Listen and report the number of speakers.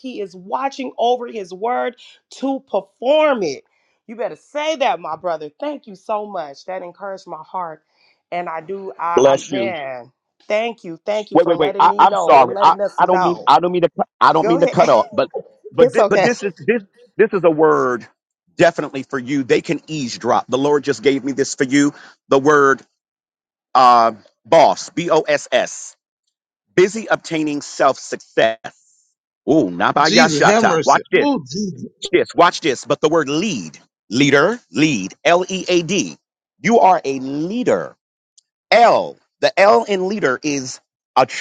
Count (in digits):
3